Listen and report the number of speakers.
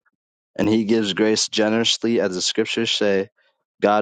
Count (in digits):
1